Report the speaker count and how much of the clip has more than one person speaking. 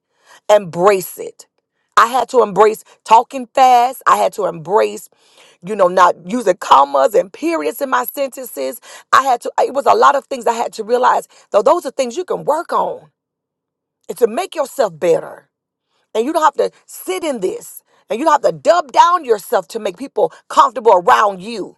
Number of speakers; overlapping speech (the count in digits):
1, no overlap